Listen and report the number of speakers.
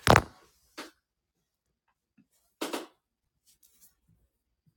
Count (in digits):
0